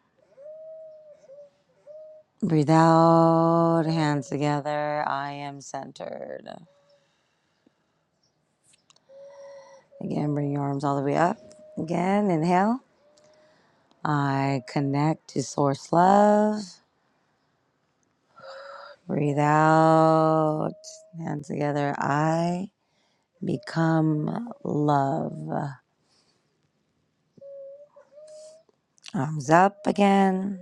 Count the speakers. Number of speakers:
1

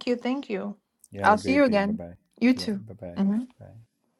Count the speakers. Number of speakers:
2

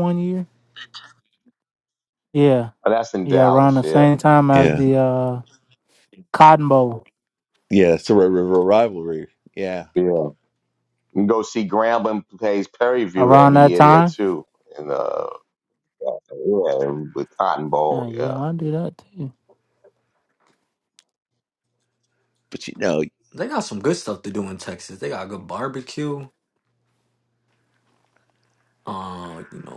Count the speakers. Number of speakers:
4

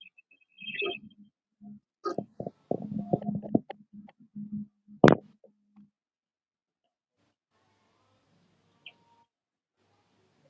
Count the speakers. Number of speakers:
0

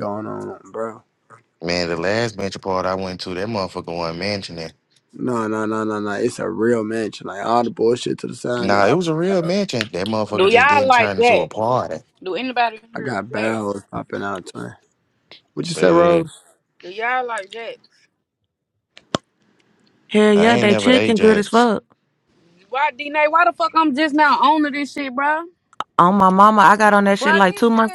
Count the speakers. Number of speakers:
4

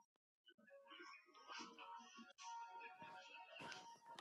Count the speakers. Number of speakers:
0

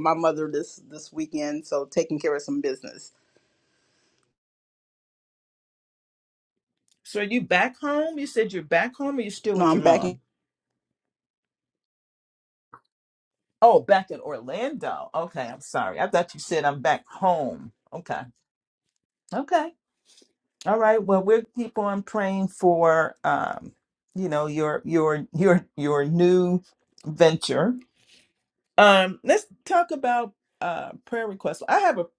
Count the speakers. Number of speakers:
2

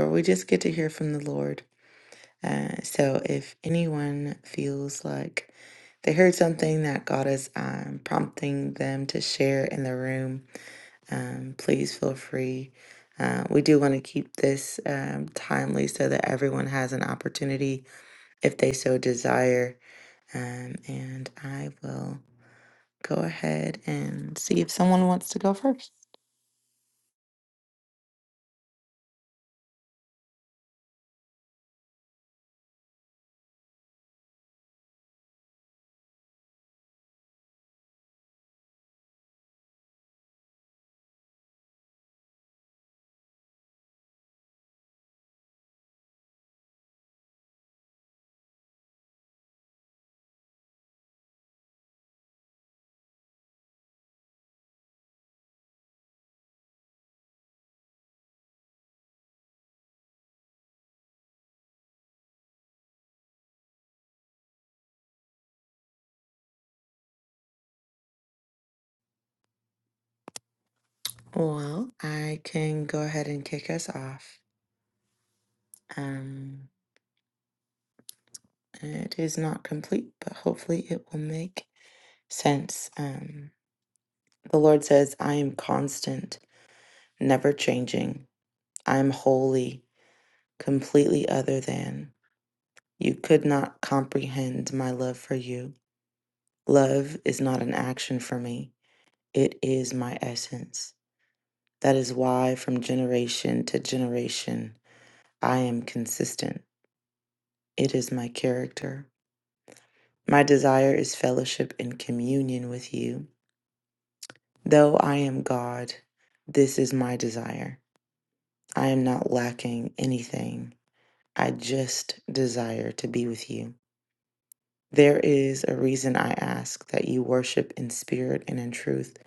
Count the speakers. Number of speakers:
1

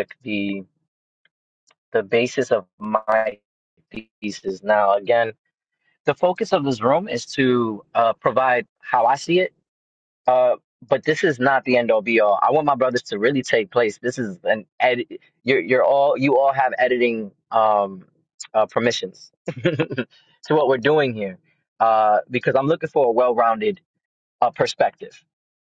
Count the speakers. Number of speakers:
1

